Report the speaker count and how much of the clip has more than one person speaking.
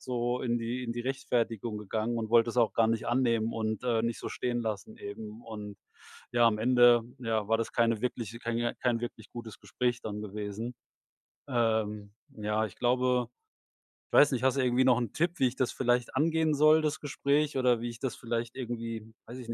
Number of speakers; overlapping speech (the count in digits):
1, no overlap